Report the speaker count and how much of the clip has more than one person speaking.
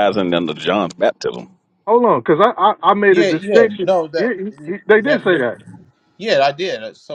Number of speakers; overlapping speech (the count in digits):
3, about 23%